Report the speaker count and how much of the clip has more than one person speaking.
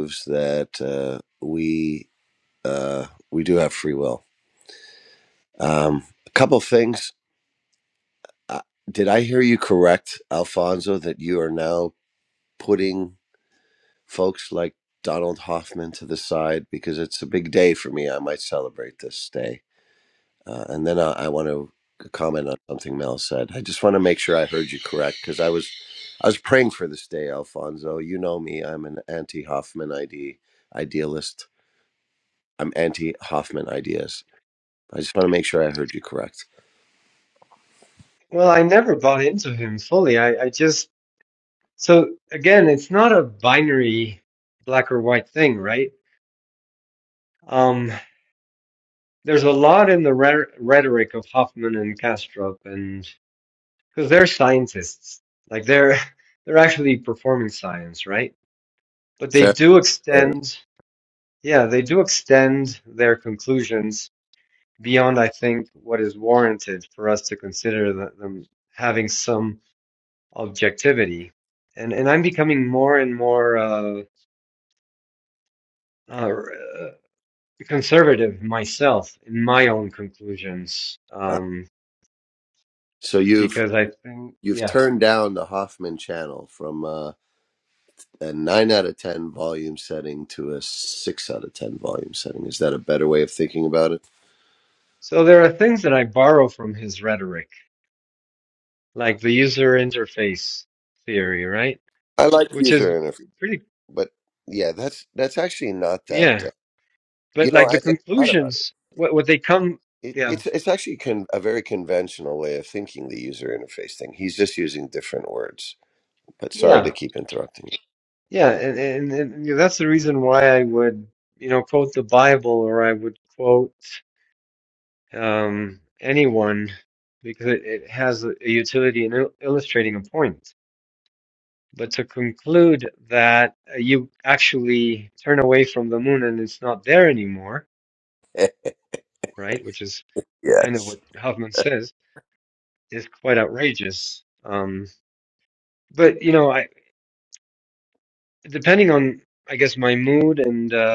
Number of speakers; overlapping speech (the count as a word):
two, about 3%